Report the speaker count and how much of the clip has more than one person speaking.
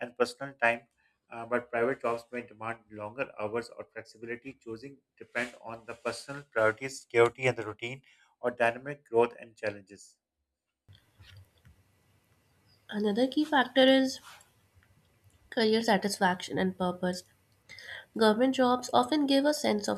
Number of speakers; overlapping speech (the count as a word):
two, no overlap